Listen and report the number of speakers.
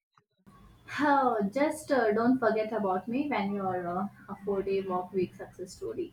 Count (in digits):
1